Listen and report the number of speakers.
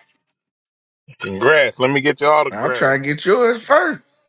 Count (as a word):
two